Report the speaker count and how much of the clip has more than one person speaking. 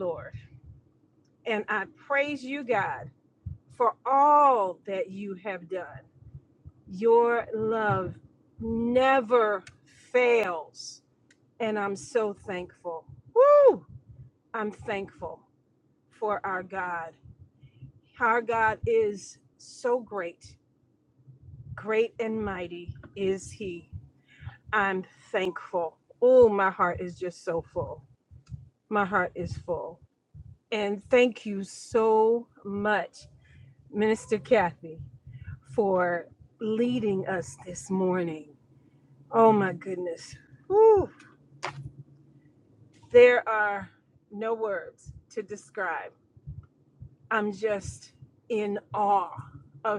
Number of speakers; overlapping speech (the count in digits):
1, no overlap